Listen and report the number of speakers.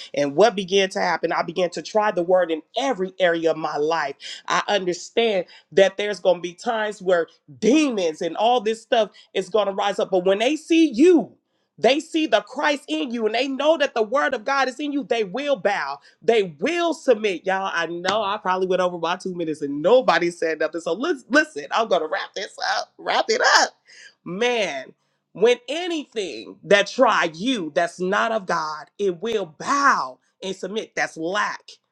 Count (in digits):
1